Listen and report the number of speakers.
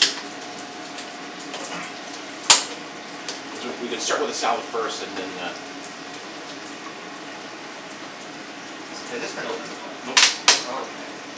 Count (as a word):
two